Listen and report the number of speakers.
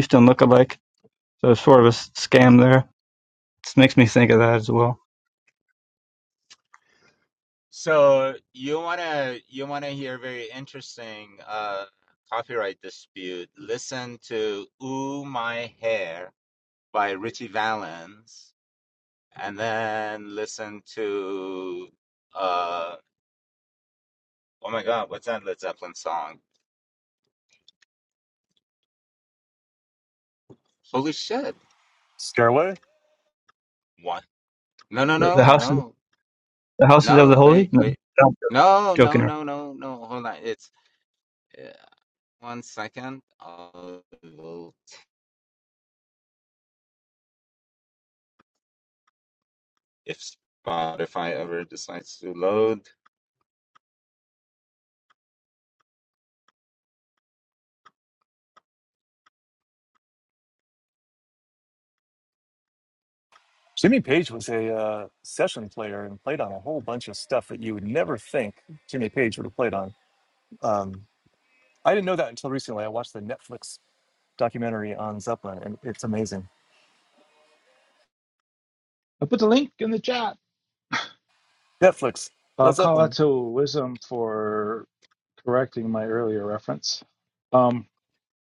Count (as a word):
four